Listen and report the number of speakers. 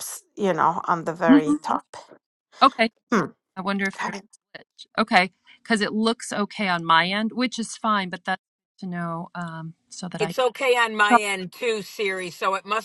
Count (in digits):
3